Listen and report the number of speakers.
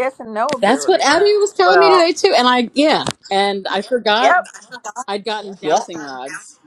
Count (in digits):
2